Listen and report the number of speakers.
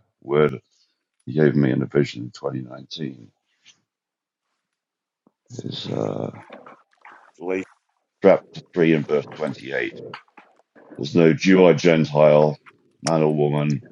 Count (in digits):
1